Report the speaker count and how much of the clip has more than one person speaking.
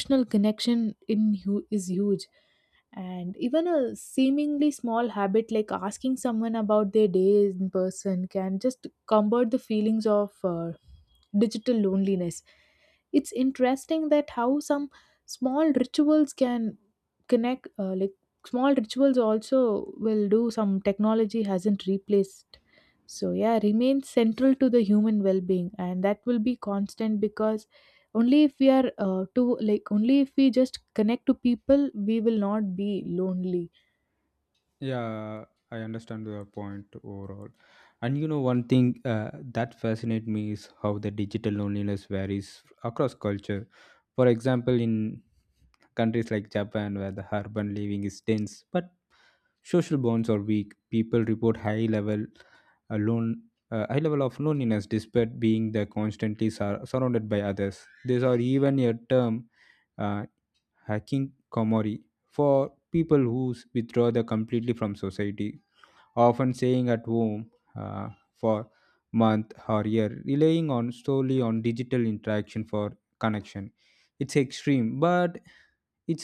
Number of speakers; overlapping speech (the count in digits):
2, no overlap